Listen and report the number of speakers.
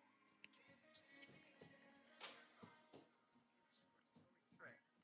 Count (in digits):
0